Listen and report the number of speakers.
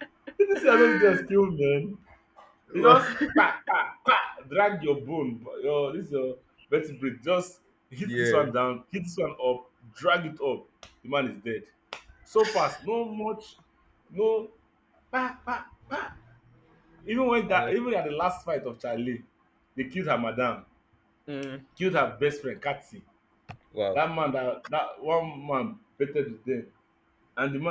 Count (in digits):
2